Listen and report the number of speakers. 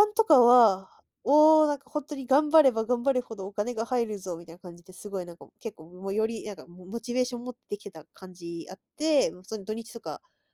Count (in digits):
1